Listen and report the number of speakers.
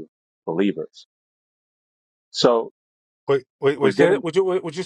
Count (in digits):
2